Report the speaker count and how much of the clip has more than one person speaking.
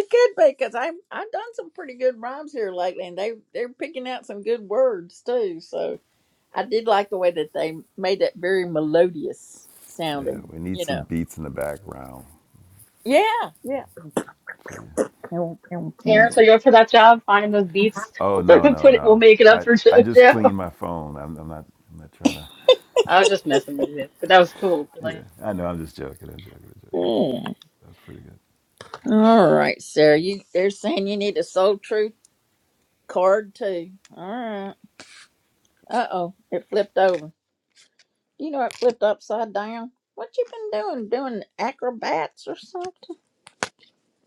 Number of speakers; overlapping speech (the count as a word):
three, about 7%